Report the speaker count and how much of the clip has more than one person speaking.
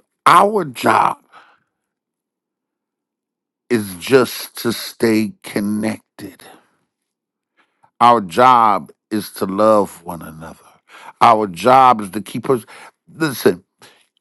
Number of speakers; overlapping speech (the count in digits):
1, no overlap